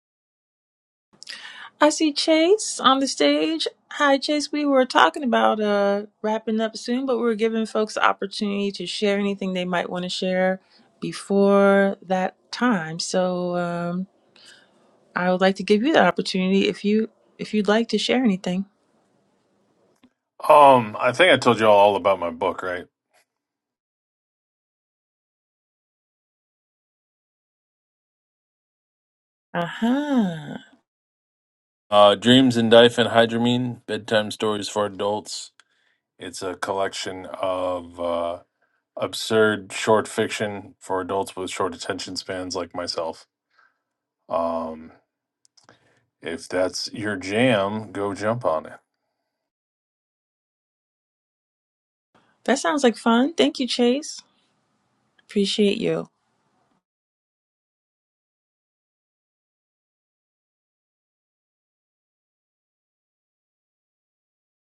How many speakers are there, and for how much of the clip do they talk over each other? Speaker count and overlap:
2, no overlap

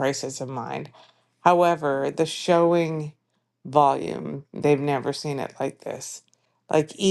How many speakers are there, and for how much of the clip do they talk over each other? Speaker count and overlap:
1, no overlap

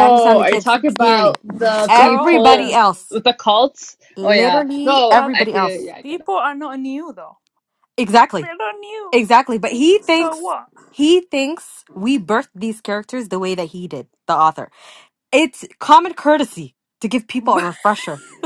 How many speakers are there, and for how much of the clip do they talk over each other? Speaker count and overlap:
3, about 25%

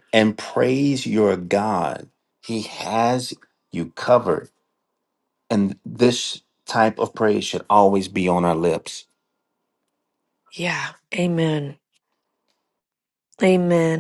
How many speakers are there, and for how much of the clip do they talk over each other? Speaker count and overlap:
2, no overlap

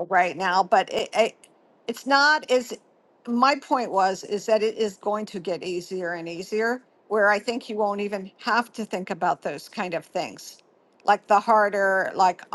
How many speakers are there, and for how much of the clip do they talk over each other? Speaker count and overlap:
1, no overlap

